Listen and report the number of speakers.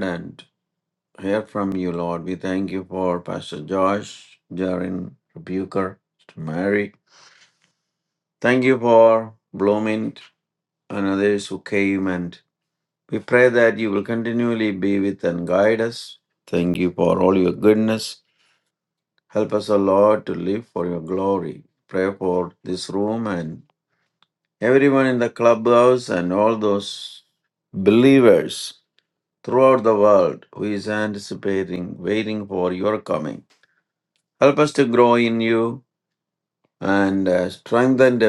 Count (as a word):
one